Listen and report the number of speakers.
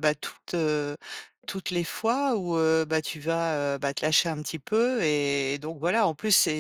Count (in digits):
1